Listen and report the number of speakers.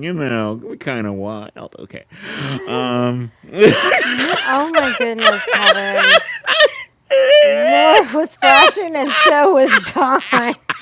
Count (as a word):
two